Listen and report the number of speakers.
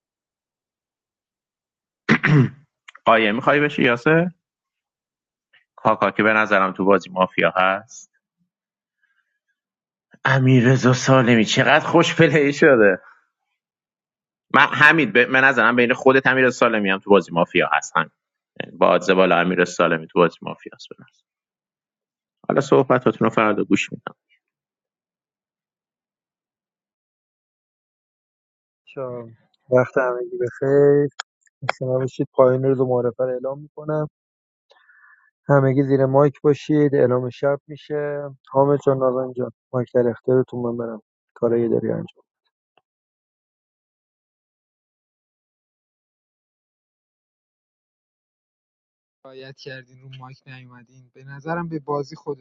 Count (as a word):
three